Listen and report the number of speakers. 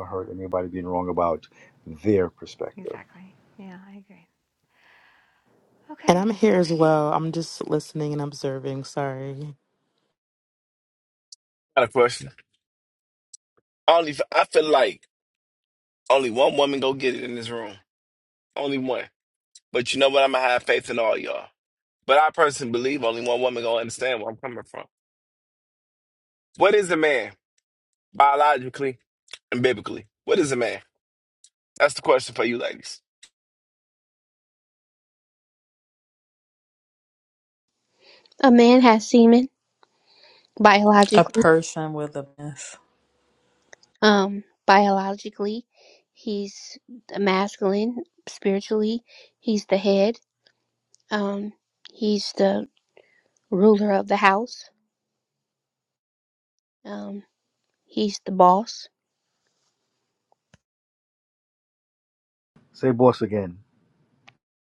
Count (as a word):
six